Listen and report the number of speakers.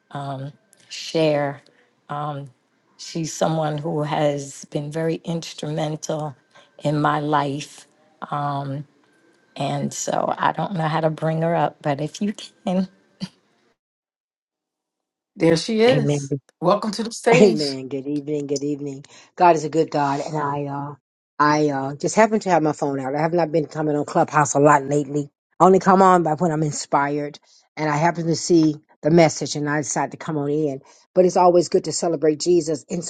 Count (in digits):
3